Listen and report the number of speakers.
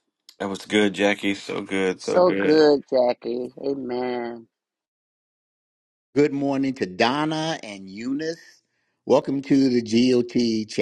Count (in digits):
3